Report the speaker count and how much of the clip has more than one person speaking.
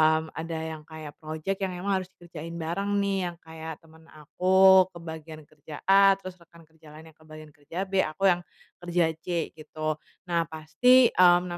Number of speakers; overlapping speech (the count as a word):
one, no overlap